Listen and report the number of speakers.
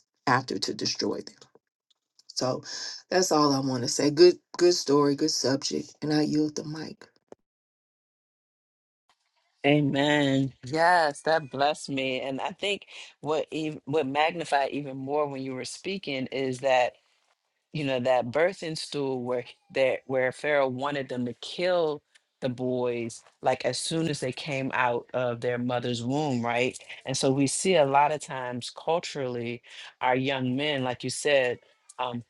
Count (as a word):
two